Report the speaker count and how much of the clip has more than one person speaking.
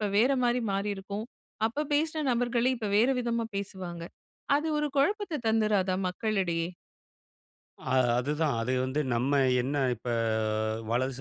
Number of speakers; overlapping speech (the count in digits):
2, no overlap